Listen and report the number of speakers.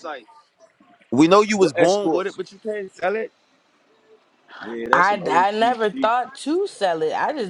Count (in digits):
3